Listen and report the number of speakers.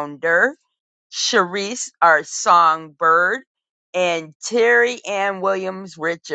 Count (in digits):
1